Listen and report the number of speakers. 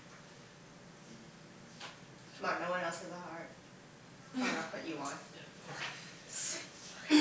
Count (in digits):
1